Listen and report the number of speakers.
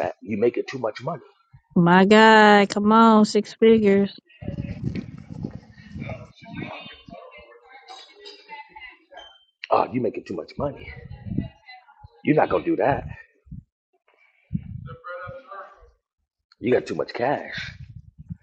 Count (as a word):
two